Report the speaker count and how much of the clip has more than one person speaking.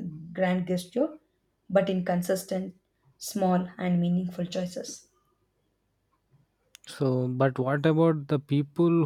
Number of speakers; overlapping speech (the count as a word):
two, no overlap